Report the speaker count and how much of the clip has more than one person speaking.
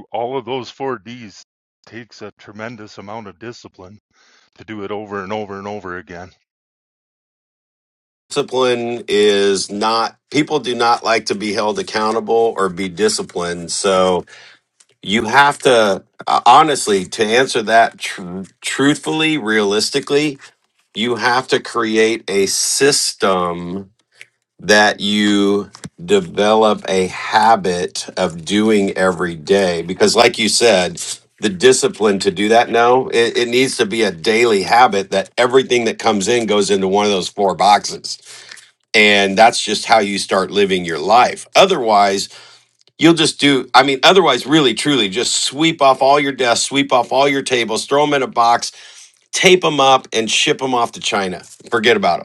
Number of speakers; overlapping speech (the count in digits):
2, no overlap